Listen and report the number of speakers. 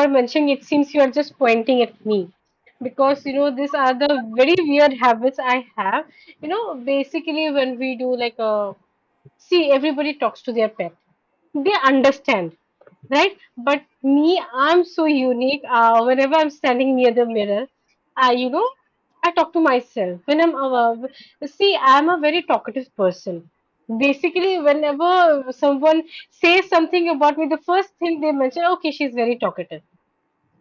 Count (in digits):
1